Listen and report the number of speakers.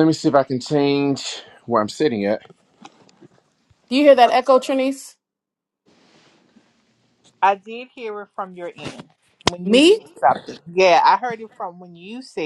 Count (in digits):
3